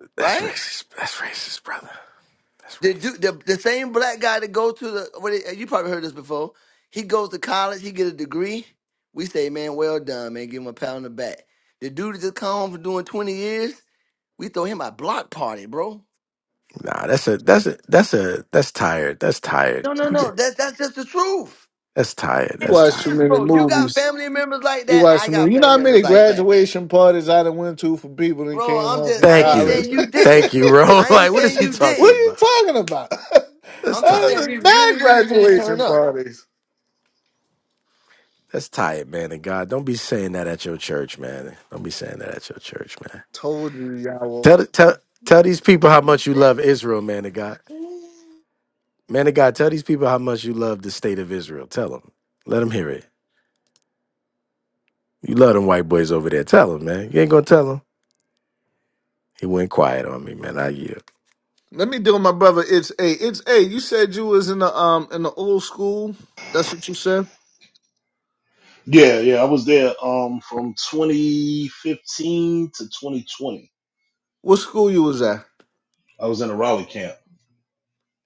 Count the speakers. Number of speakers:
4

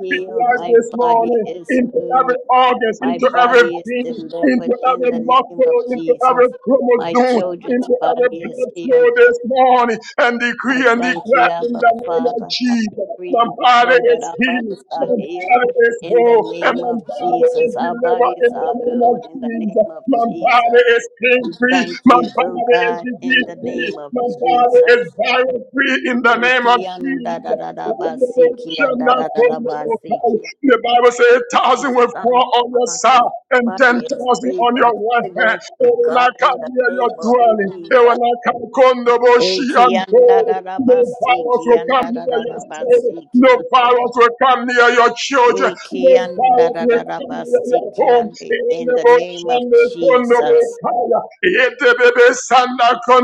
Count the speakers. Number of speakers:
2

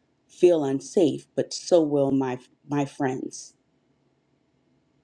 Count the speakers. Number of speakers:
1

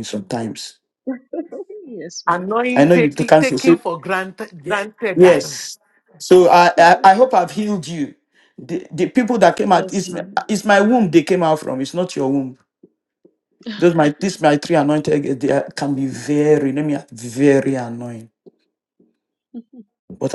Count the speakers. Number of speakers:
3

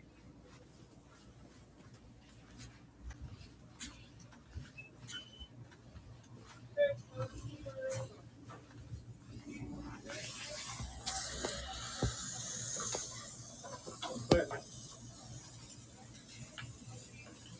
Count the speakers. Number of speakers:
0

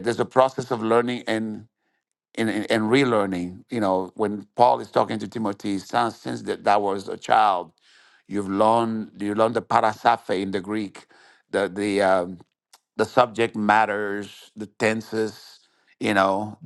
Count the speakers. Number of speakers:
1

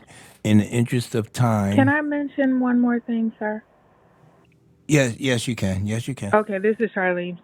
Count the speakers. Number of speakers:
2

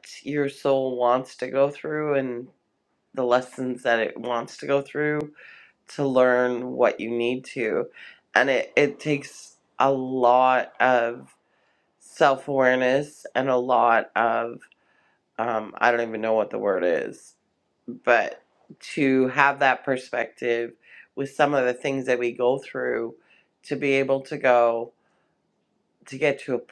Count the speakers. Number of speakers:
1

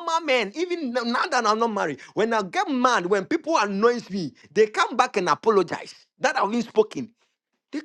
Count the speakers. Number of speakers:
1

